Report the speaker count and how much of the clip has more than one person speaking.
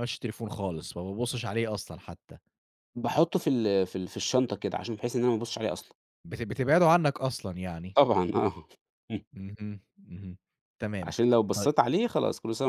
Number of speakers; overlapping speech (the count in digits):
2, about 2%